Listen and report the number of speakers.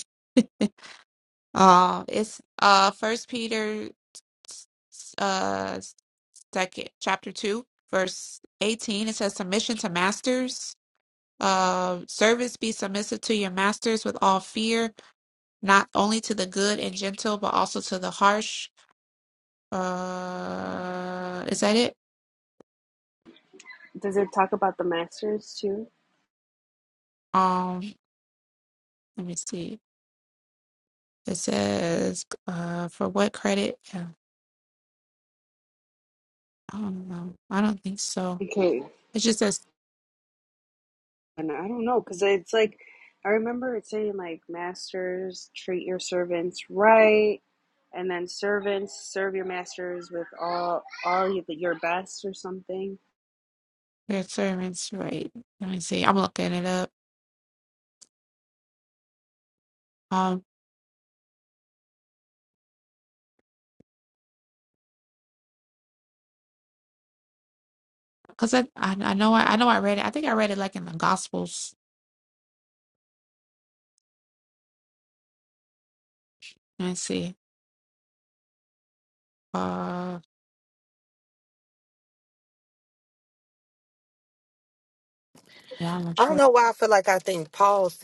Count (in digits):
3